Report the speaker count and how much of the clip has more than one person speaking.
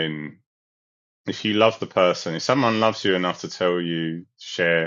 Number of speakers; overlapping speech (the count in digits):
1, no overlap